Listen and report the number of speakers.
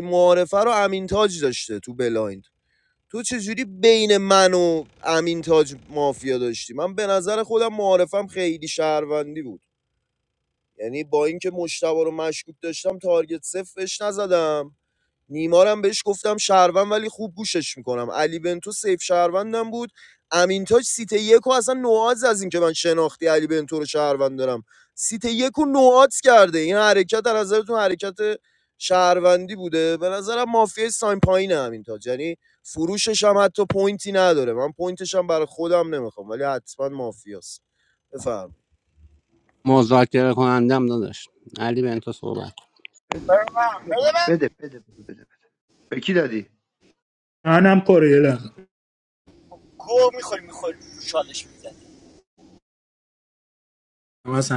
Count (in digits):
5